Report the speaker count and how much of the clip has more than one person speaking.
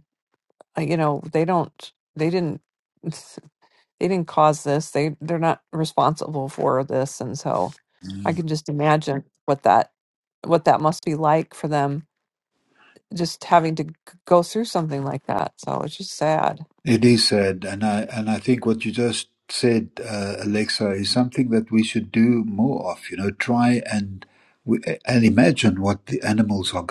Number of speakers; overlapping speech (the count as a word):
two, no overlap